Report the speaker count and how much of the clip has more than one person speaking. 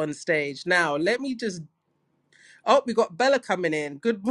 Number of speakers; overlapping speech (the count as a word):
one, no overlap